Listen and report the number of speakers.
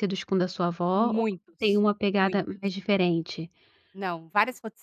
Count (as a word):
two